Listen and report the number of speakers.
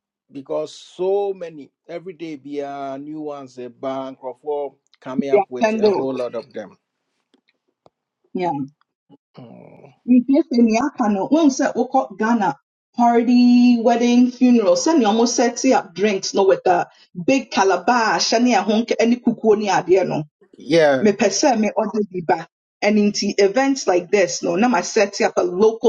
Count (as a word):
two